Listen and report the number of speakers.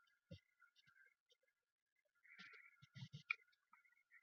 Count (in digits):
0